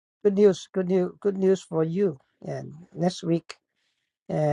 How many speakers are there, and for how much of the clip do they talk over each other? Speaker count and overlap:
one, no overlap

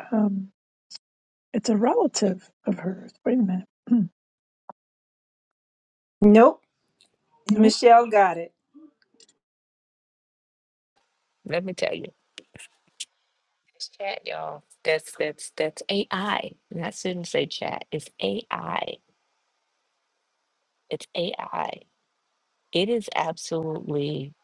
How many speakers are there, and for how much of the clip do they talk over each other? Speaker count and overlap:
three, about 1%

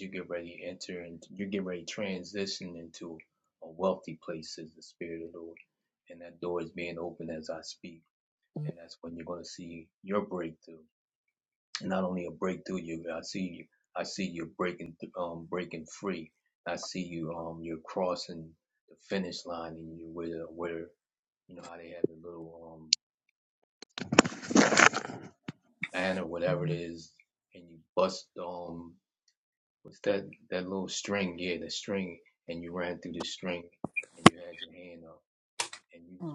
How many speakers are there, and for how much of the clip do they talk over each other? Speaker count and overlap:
one, no overlap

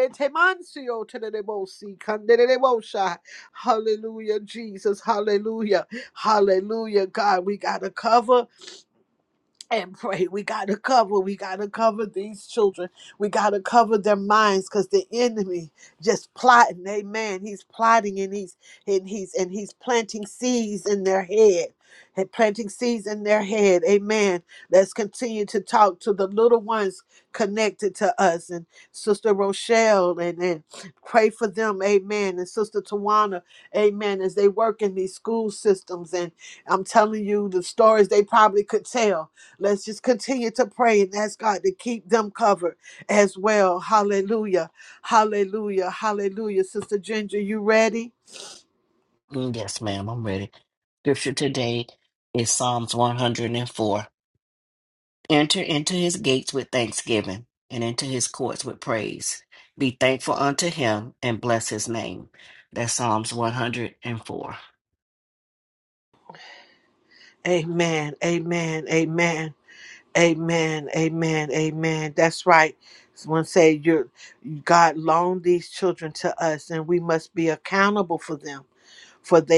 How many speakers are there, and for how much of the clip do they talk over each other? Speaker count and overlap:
two, no overlap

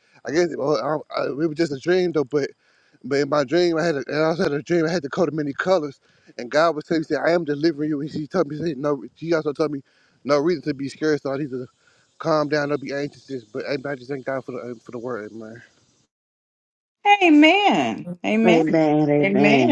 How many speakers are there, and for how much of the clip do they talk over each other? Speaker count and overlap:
three, about 4%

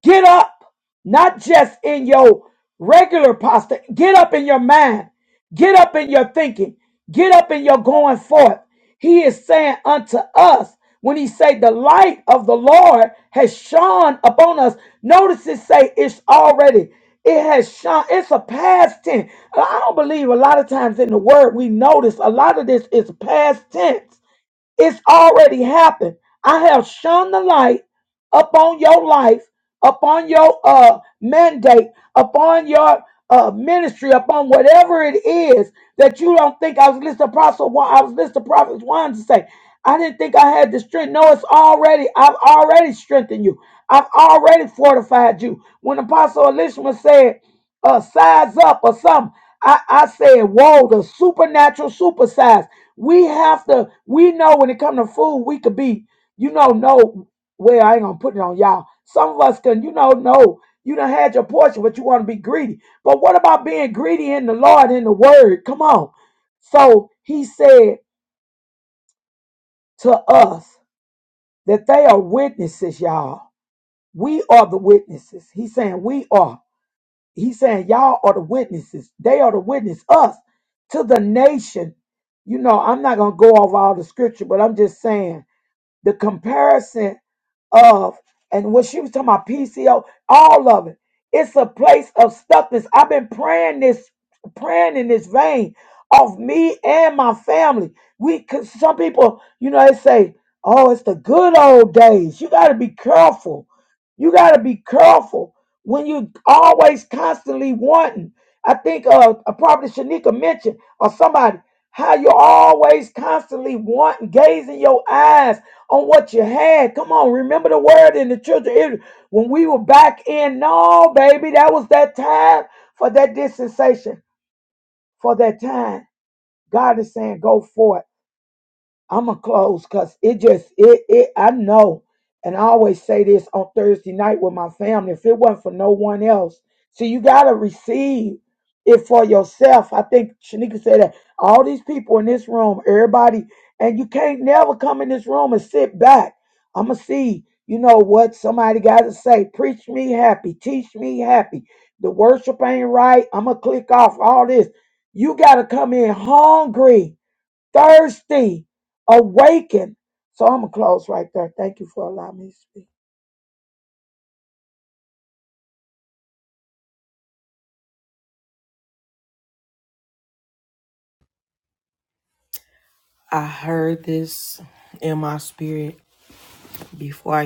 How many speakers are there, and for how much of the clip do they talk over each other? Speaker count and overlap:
two, no overlap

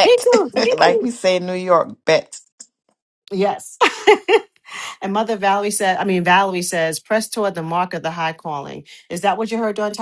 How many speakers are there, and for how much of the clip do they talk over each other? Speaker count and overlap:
two, about 6%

